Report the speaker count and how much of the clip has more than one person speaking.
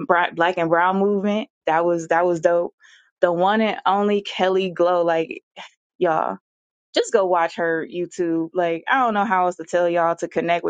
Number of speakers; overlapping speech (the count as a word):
one, no overlap